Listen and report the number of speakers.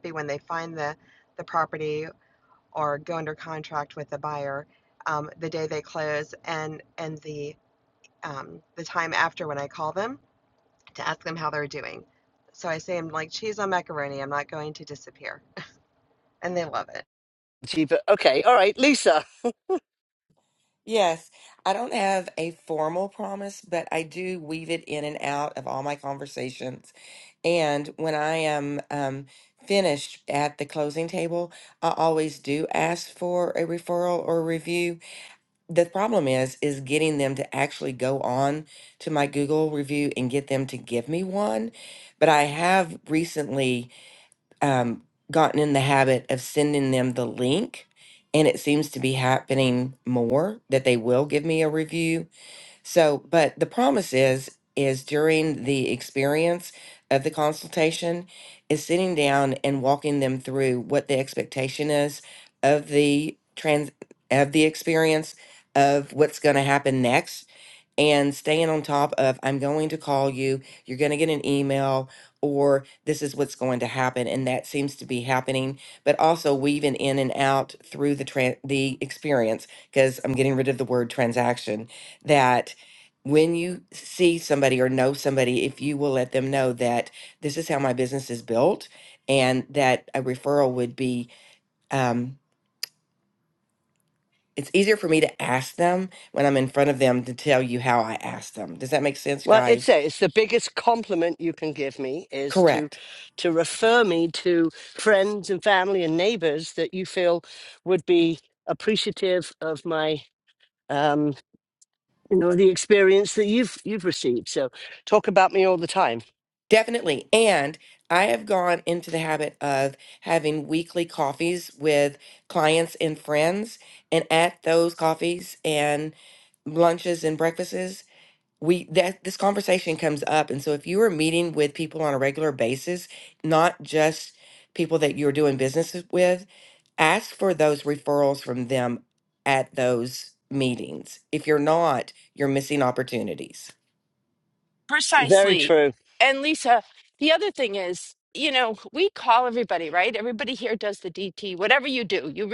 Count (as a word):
four